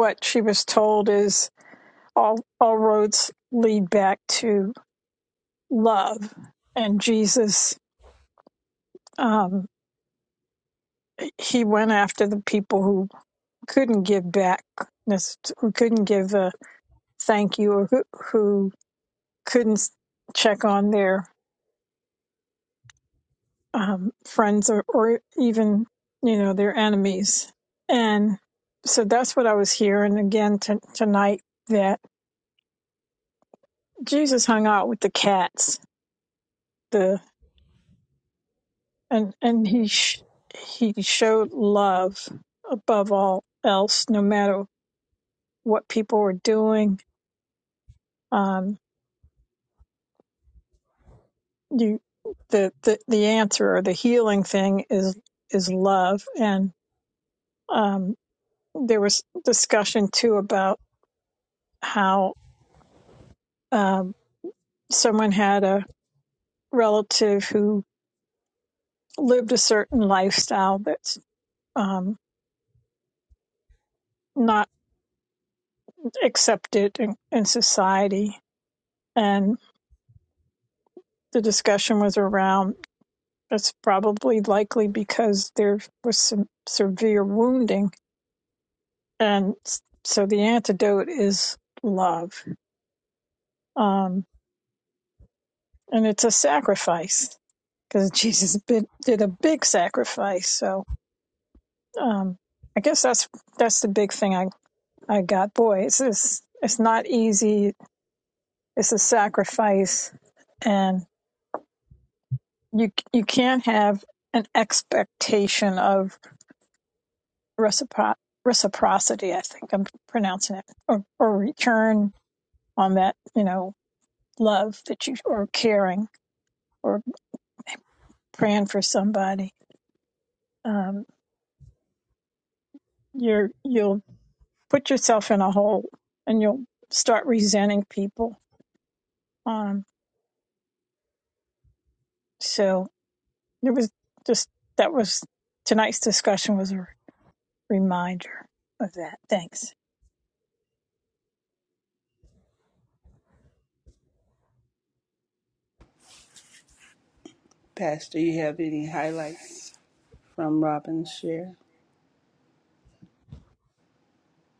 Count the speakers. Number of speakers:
2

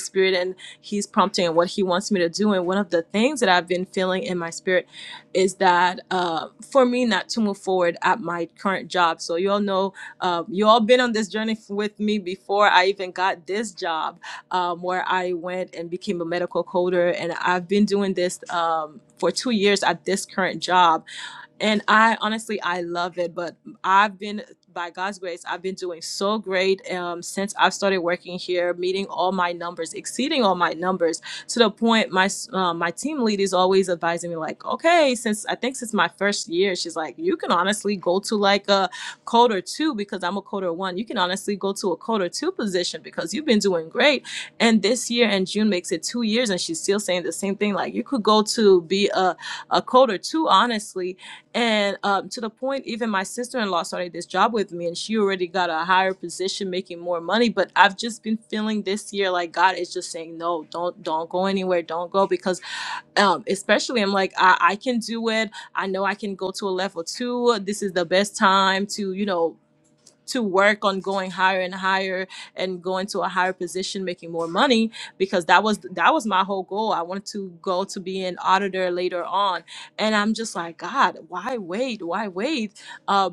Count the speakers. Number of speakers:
1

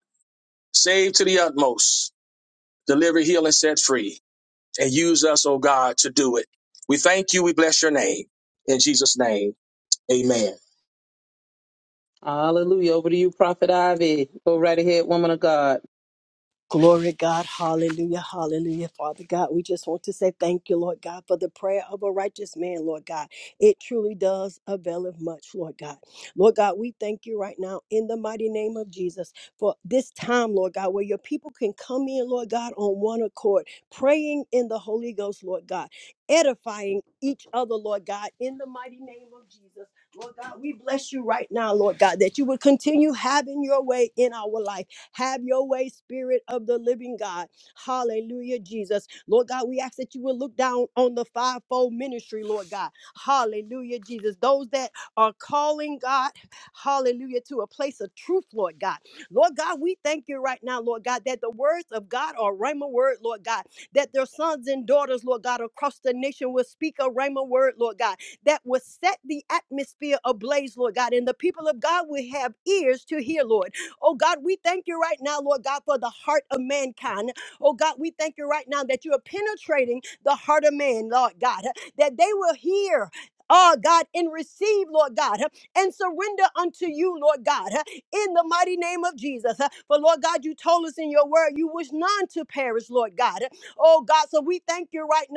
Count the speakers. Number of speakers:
3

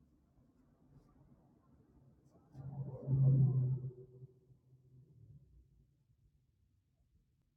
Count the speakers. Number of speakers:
0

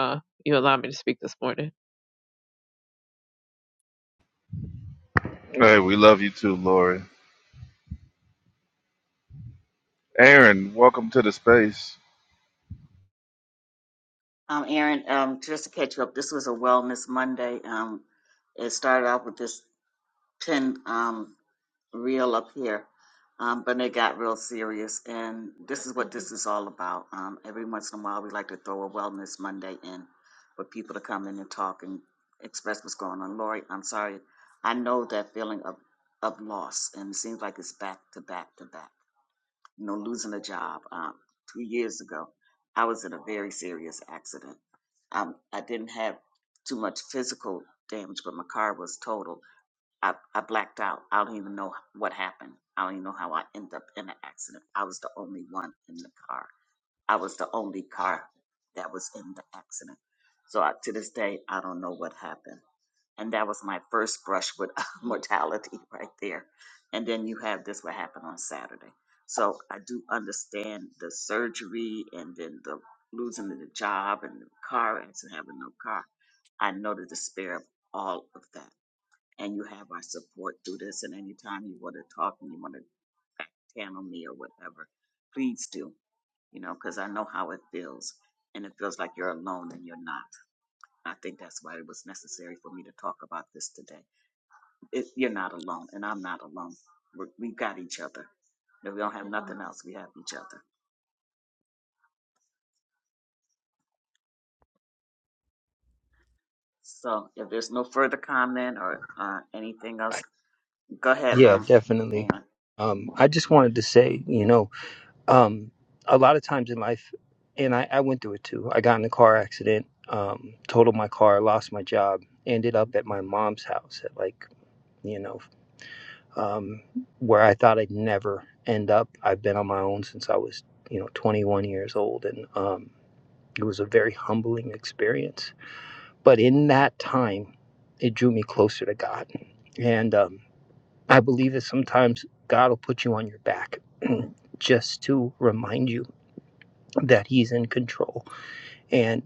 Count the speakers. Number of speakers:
4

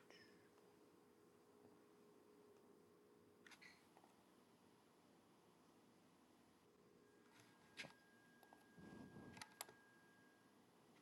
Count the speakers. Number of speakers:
0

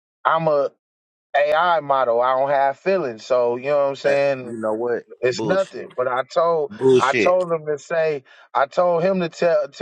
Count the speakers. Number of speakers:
2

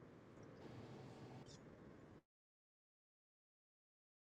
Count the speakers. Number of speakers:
0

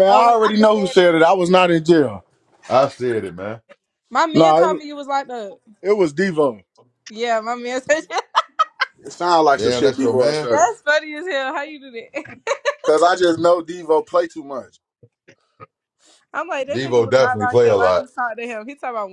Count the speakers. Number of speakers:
3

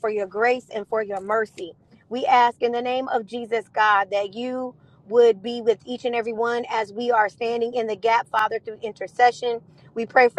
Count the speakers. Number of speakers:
1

